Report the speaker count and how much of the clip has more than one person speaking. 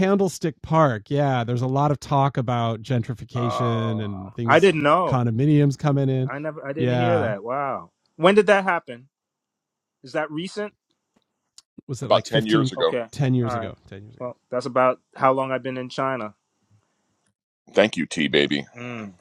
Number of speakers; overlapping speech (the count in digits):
3, about 16%